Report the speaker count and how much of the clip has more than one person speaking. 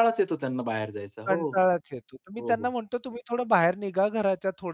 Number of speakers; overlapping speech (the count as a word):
two, about 12%